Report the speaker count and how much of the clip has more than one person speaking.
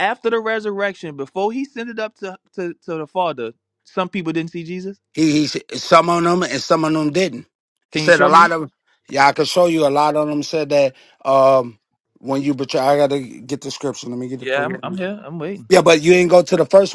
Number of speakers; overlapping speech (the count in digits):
2, about 6%